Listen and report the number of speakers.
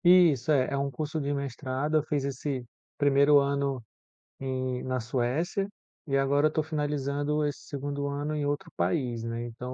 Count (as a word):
one